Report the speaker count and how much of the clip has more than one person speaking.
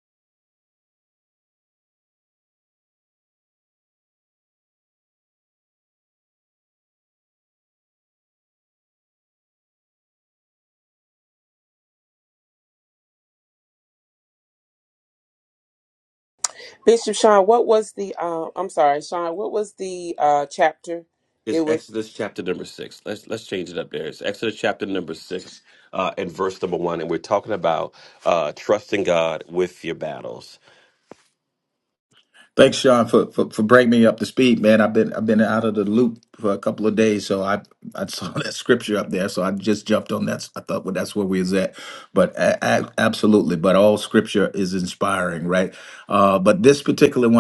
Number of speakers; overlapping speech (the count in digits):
3, about 1%